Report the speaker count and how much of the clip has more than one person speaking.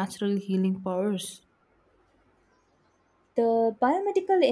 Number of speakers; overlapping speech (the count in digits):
2, no overlap